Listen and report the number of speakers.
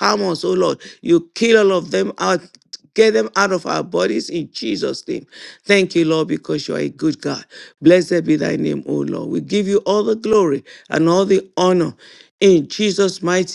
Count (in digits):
1